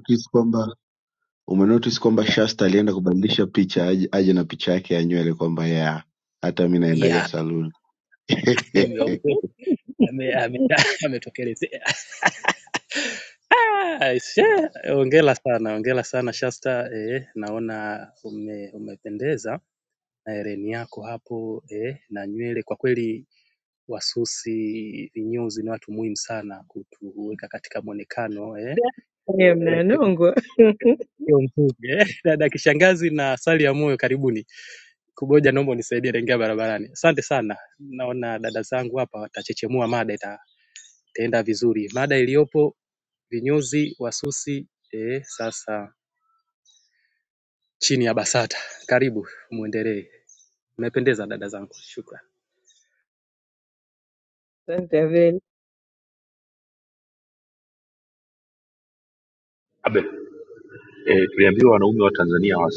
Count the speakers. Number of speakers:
four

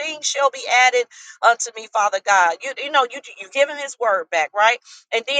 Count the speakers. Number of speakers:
one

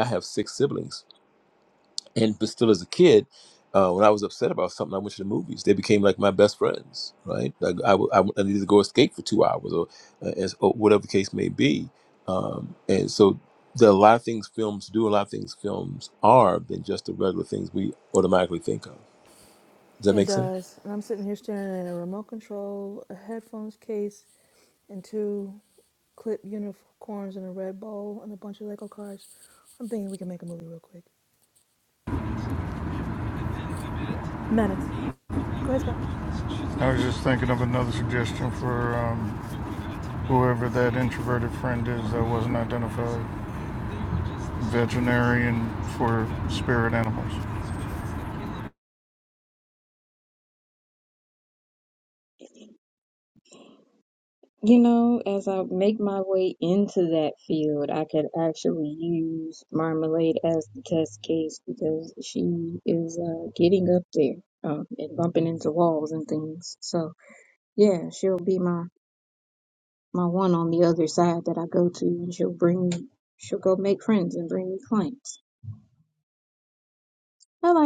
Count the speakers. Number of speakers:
four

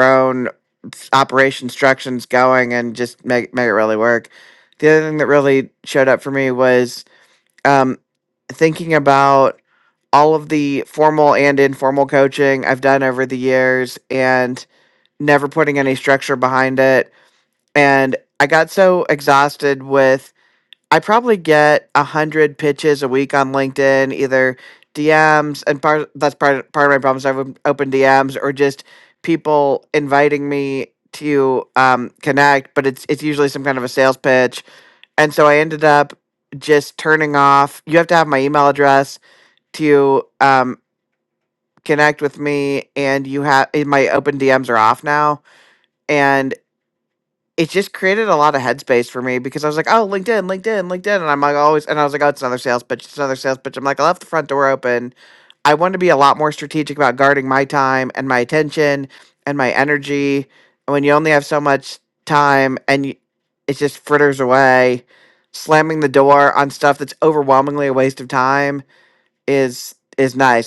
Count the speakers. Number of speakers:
one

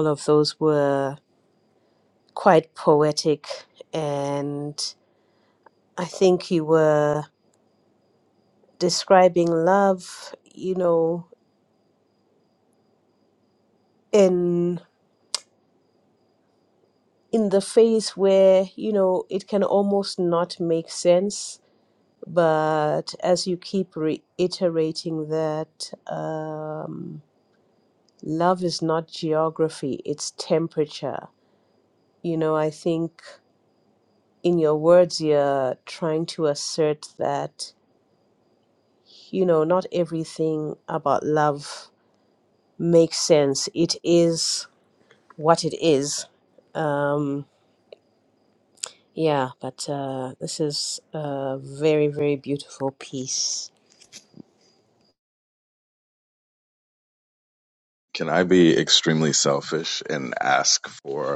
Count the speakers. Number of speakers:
two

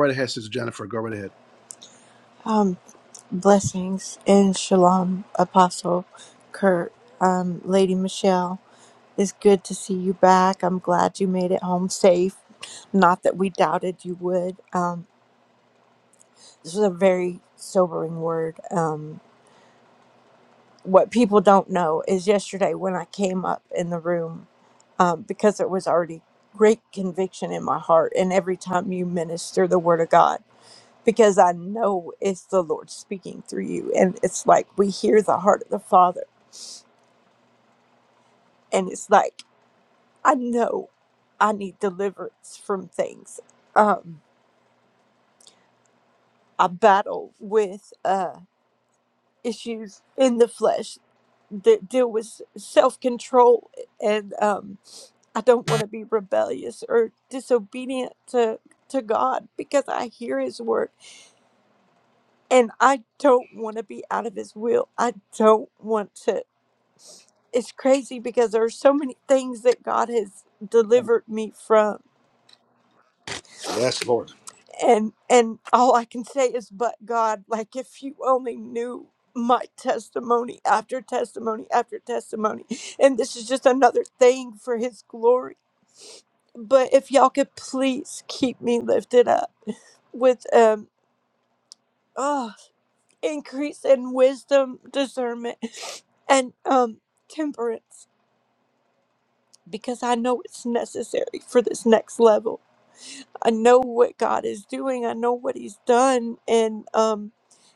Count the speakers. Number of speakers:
two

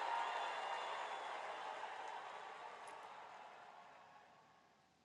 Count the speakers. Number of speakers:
zero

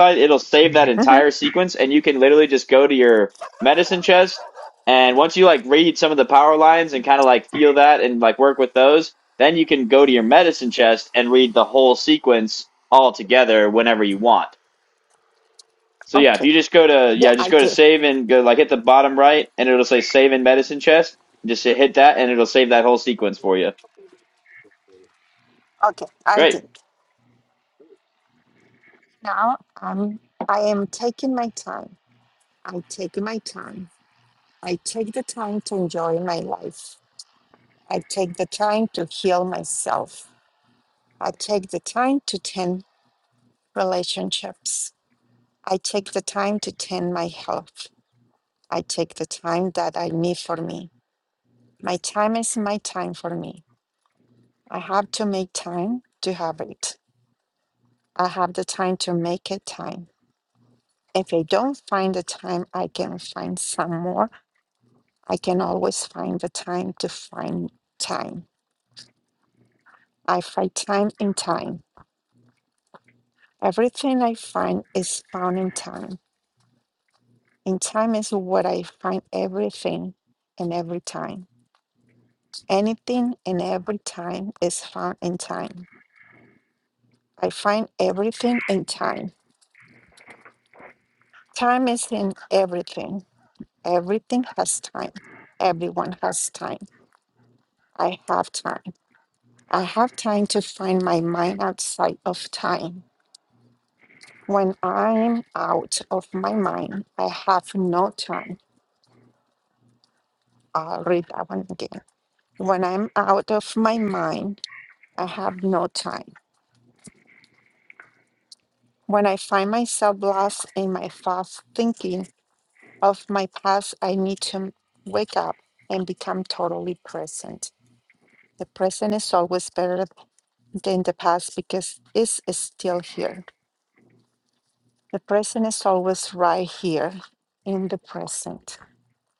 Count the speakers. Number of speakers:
two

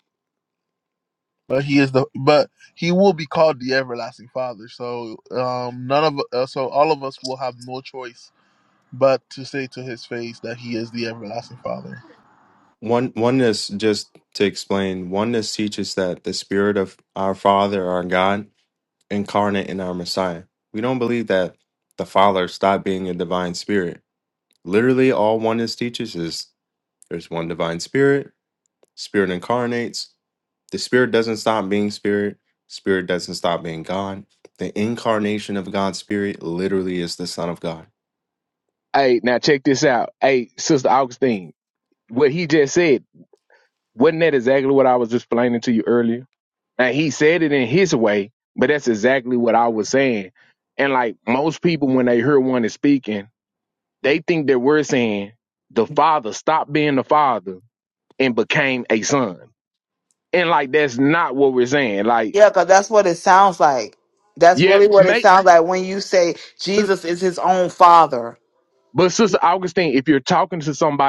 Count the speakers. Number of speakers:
four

